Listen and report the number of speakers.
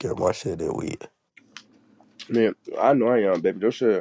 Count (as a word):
two